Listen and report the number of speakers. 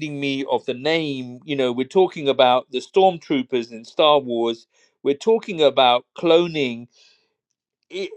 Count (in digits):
1